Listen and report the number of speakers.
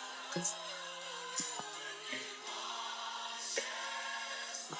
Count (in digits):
0